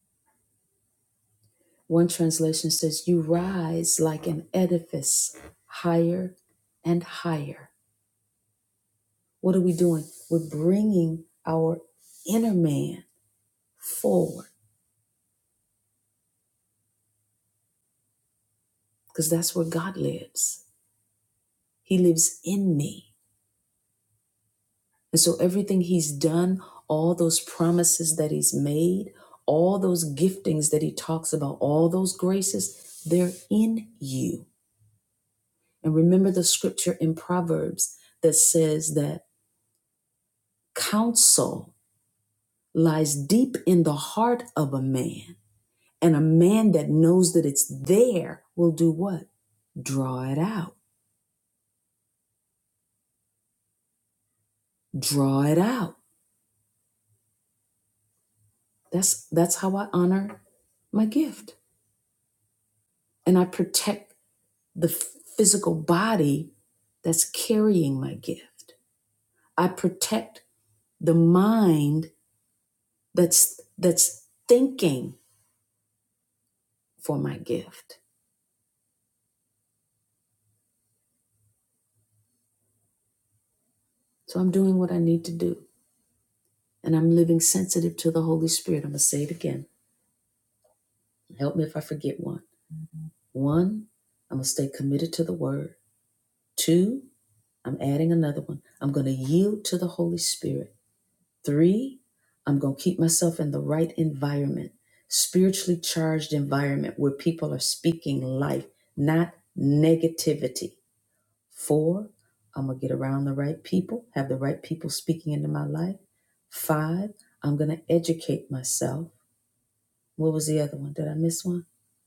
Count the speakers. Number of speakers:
1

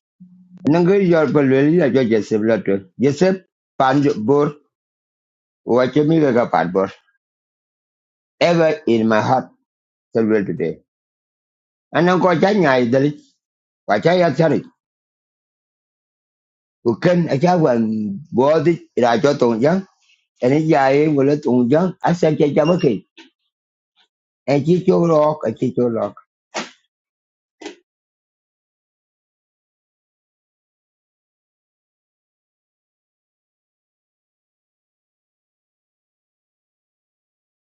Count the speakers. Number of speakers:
1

